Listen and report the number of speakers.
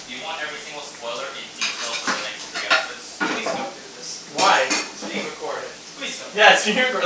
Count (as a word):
three